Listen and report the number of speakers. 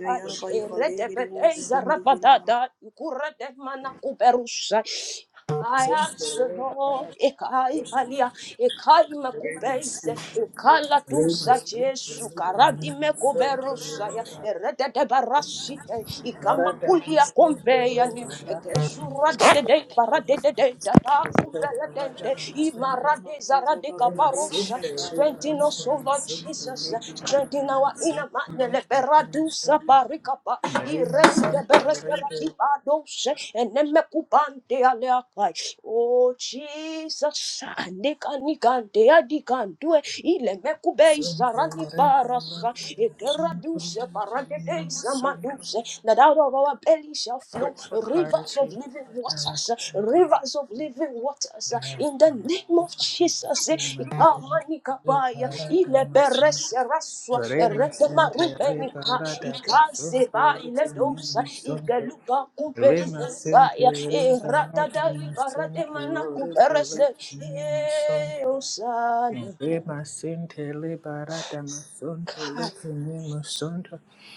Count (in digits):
3